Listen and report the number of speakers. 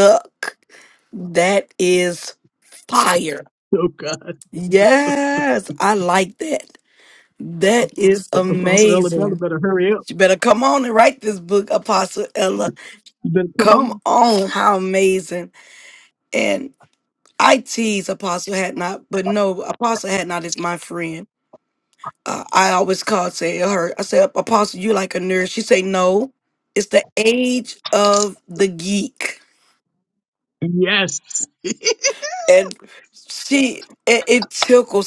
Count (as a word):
two